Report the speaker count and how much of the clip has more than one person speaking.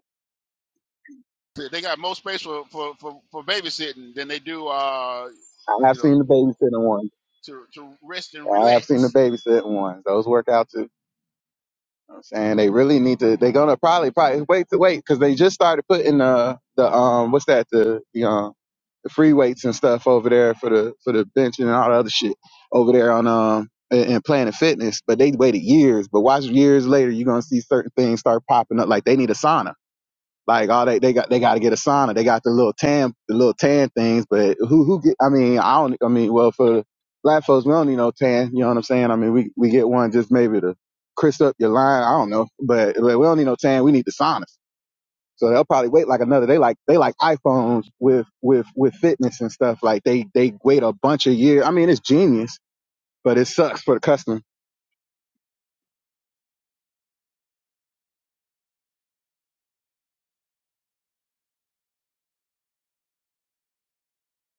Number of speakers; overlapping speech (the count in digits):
2, about 1%